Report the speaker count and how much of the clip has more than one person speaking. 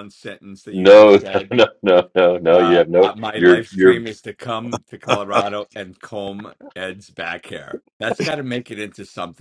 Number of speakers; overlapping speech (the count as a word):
two, about 24%